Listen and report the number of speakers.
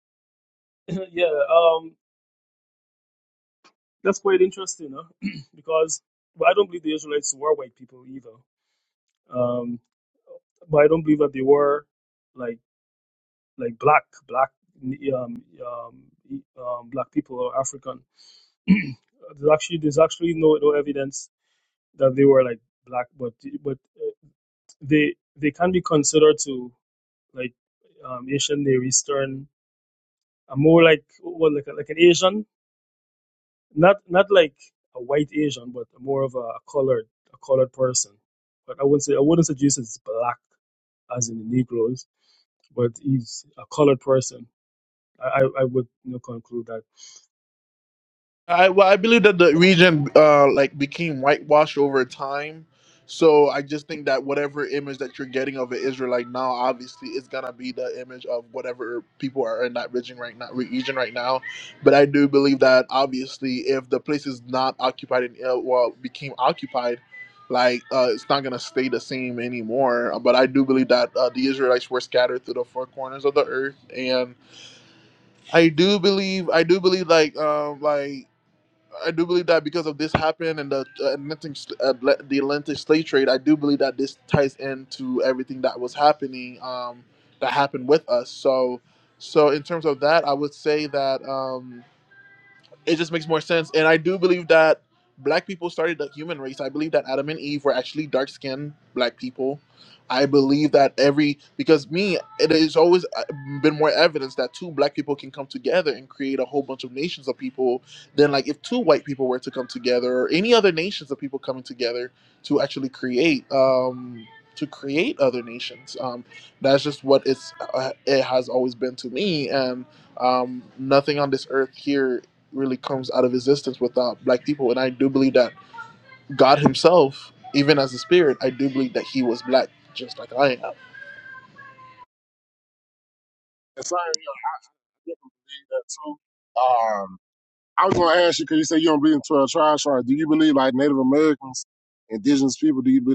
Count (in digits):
3